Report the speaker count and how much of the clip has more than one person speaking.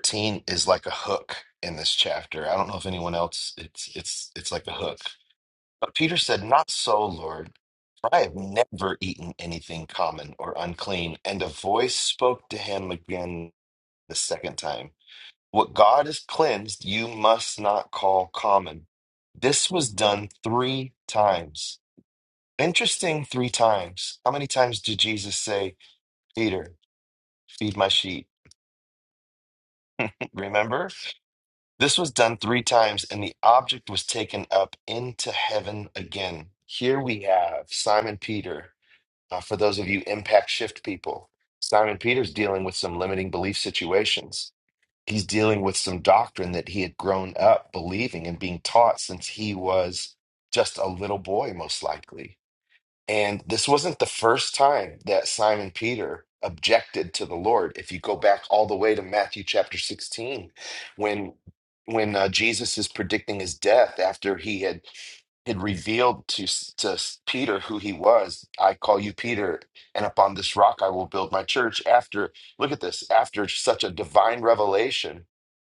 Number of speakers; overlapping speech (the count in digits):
1, no overlap